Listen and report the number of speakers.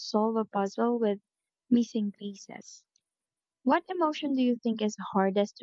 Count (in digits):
1